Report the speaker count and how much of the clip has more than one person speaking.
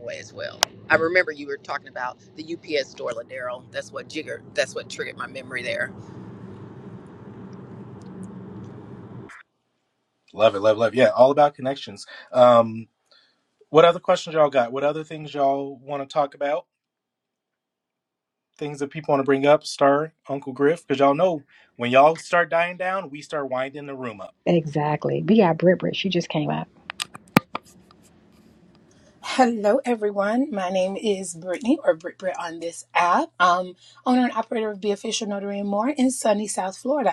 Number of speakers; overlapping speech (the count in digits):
4, no overlap